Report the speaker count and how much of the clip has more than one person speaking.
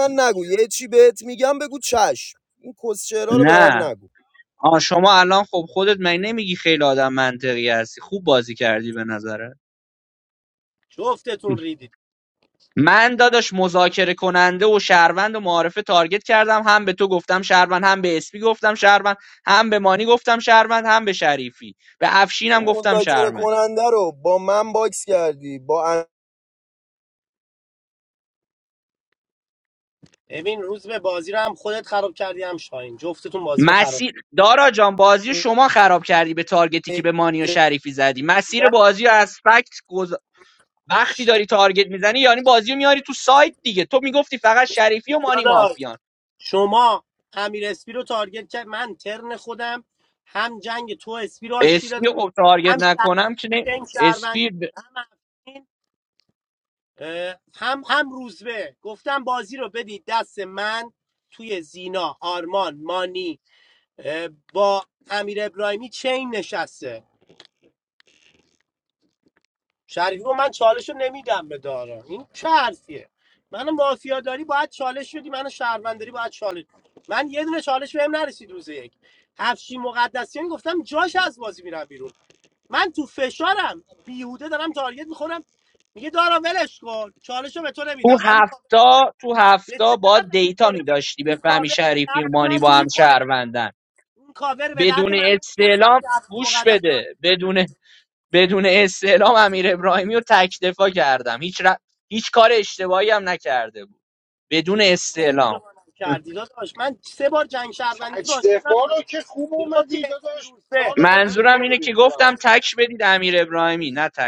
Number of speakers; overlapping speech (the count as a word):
four, about 11%